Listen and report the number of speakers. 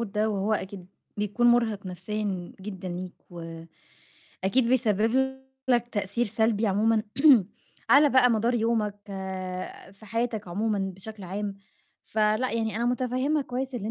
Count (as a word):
one